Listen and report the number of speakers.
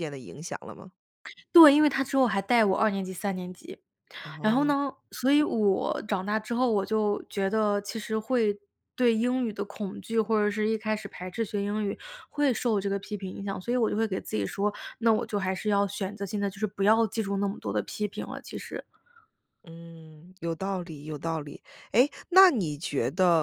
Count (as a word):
two